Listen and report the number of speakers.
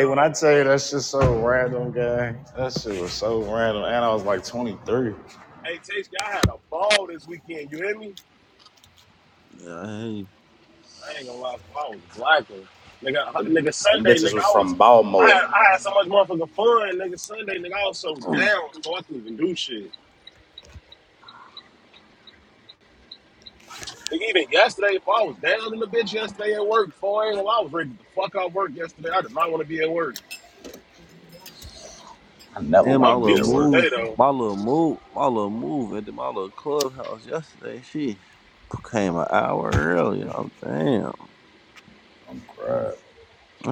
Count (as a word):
three